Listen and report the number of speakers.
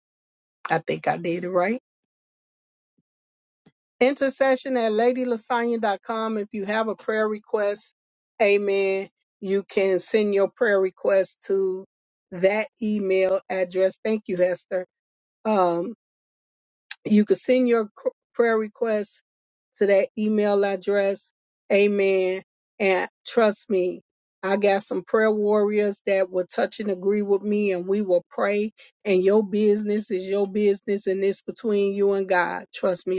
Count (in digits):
1